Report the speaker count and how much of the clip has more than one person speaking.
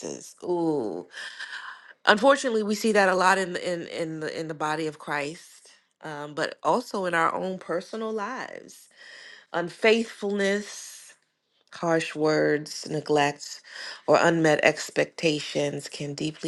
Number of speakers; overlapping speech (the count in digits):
1, no overlap